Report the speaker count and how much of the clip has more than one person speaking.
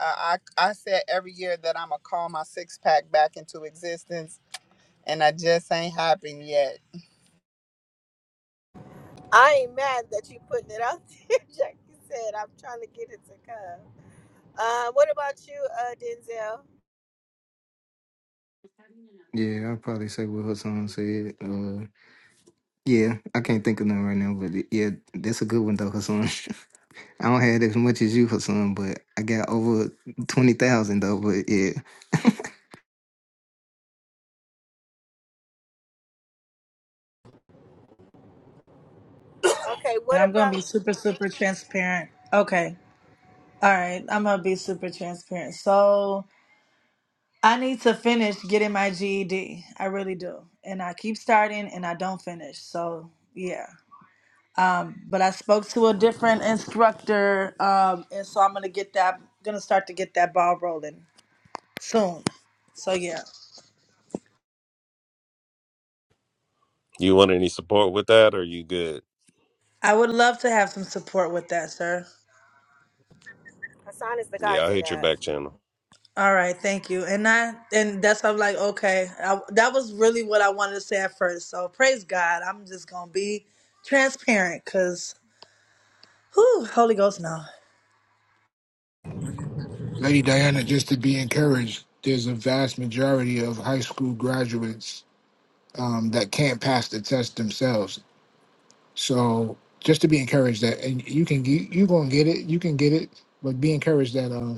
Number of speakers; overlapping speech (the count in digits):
6, about 1%